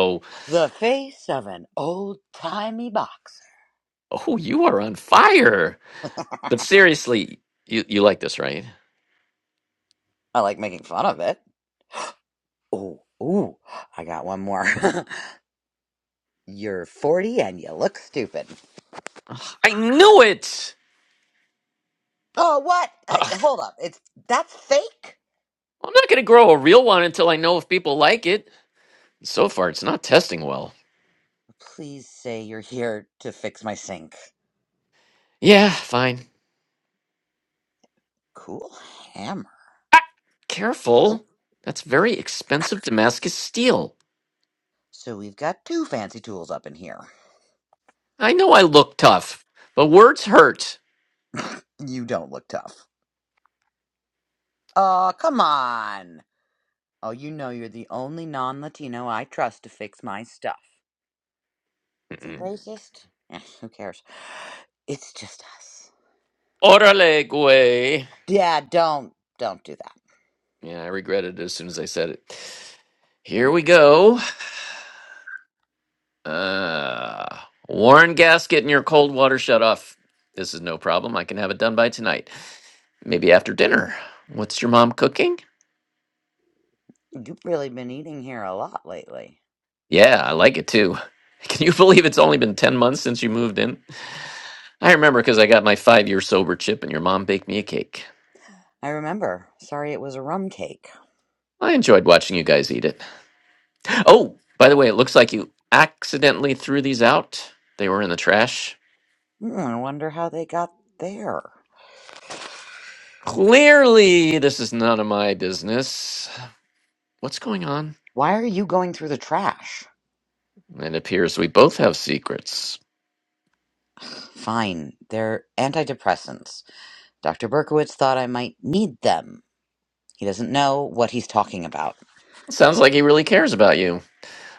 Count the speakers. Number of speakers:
2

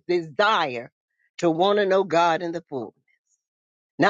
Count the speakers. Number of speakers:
1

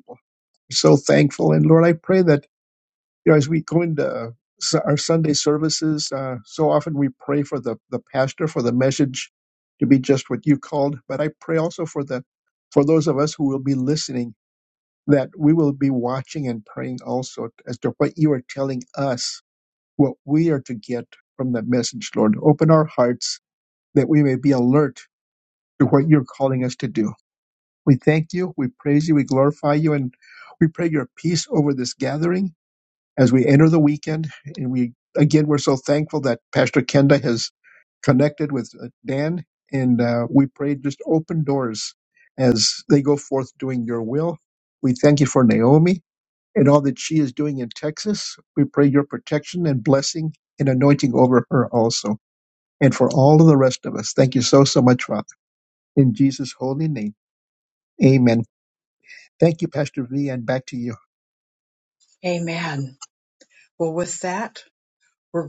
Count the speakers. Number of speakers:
2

